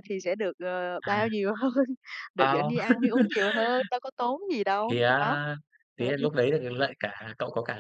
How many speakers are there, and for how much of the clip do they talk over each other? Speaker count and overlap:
two, about 18%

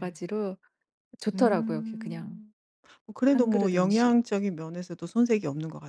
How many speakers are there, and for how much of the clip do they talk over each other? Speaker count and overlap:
two, about 32%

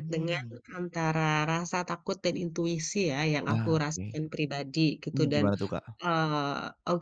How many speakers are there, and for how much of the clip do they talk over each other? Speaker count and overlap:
two, about 21%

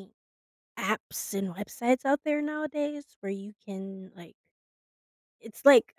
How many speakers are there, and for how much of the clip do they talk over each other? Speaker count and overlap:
one, no overlap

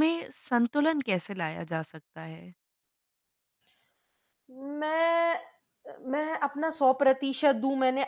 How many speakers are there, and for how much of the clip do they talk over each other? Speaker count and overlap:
two, no overlap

